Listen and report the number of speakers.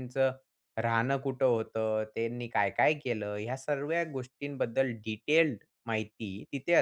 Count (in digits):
1